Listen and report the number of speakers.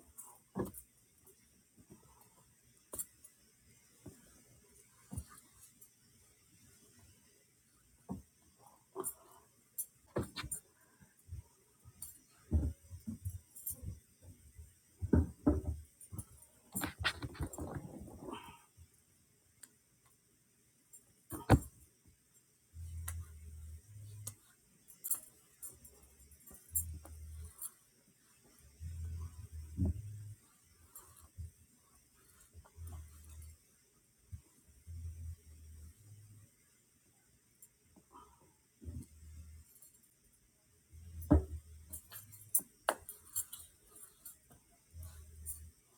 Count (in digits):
0